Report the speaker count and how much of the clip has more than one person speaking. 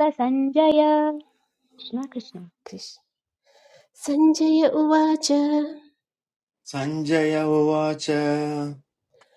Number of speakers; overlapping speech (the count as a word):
three, no overlap